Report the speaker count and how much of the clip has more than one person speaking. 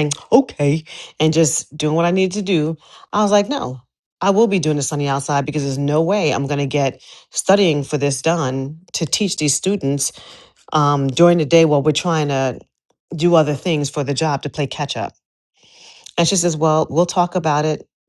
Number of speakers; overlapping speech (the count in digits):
1, no overlap